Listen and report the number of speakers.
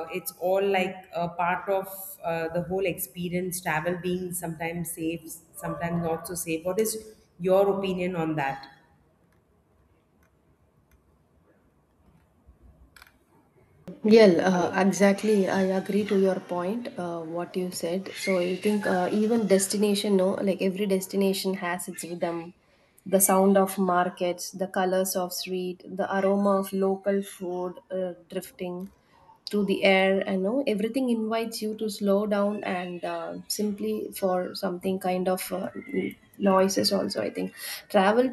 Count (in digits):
2